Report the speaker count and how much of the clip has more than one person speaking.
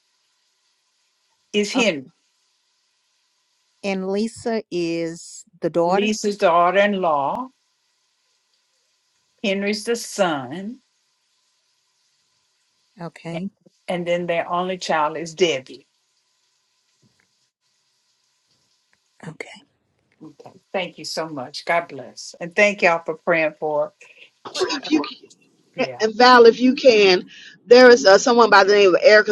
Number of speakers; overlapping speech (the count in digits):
3, about 1%